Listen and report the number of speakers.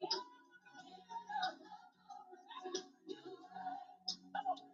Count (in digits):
0